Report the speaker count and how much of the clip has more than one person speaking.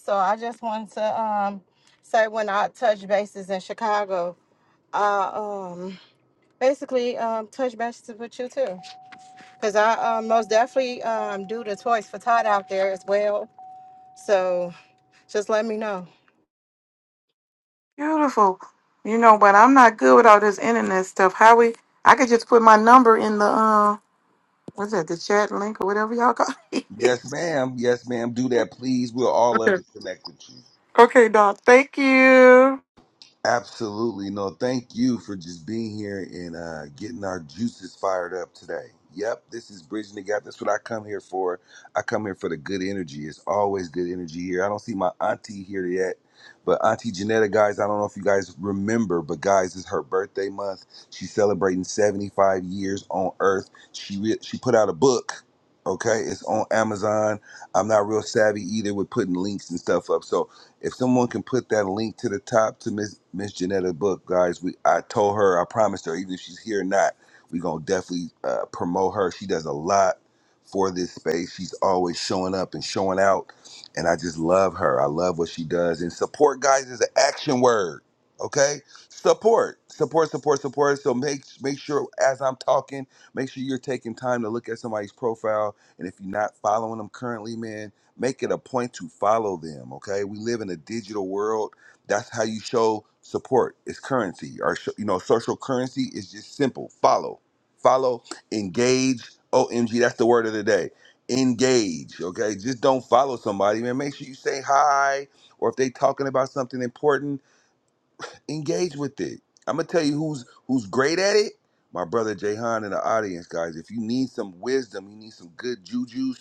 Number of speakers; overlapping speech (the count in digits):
3, under 1%